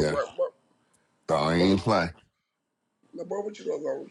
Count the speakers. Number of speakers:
two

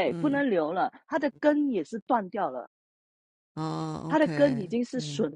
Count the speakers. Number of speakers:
two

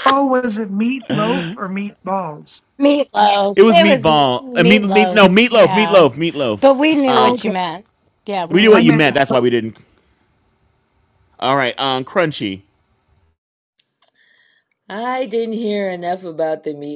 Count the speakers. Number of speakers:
four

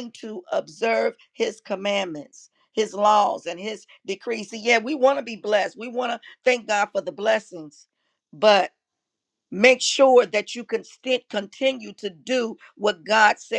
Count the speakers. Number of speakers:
one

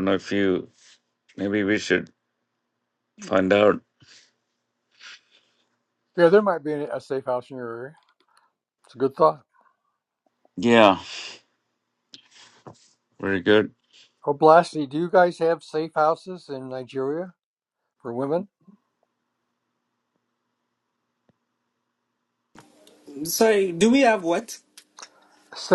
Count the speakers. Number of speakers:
three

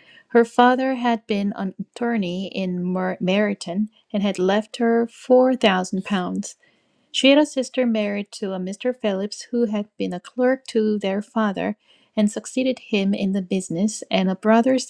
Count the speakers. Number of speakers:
one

